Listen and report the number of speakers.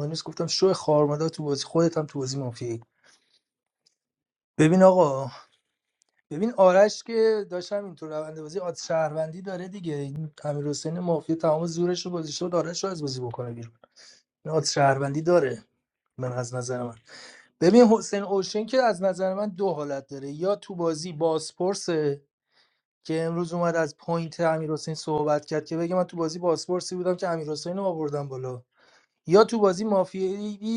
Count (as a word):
one